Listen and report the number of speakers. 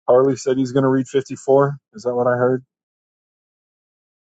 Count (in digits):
1